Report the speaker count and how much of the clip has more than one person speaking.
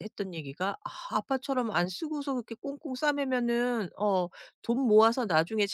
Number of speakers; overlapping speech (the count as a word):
one, no overlap